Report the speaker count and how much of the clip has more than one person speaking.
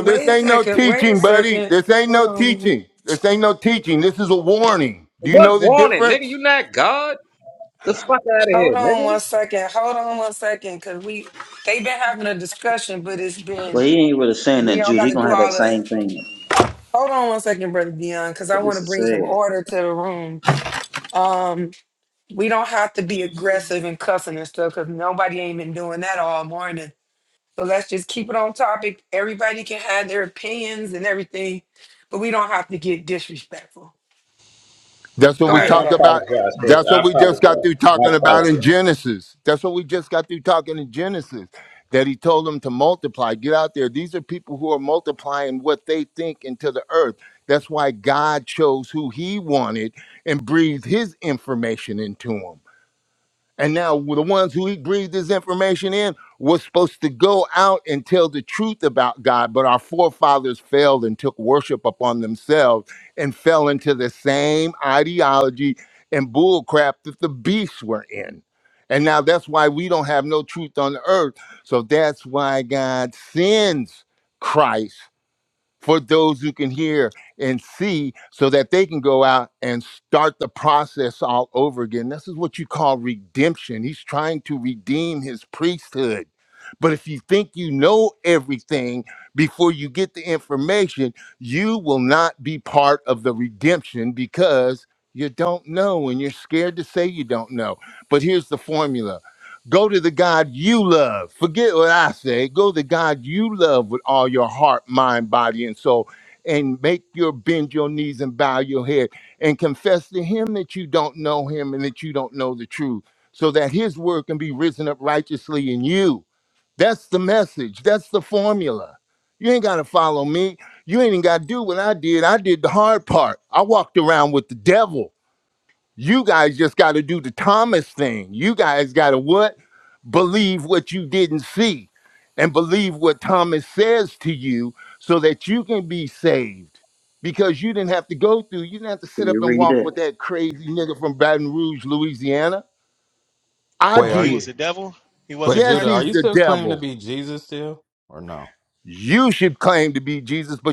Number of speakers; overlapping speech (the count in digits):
6, about 8%